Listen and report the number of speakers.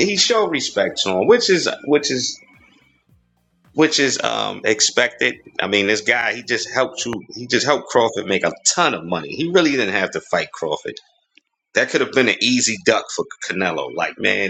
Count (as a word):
one